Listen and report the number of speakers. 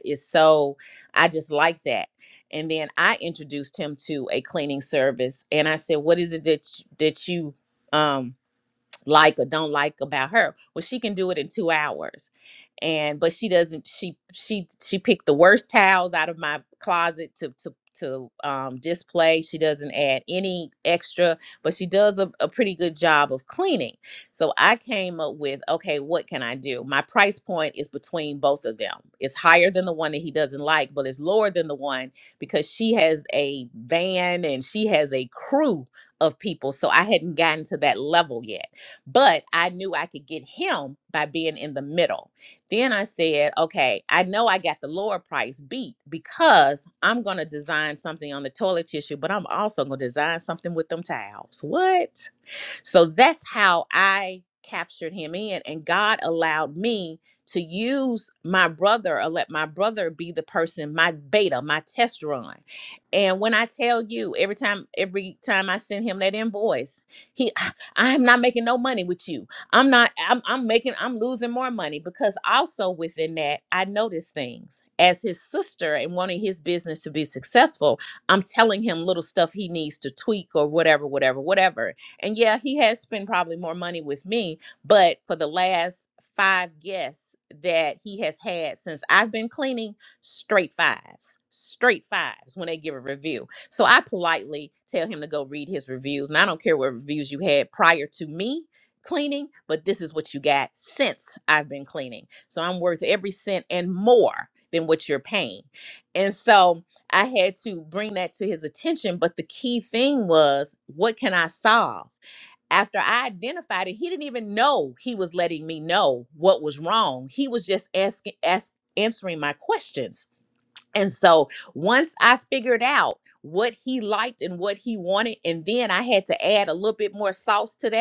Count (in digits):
1